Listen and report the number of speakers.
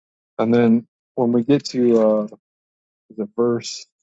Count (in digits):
1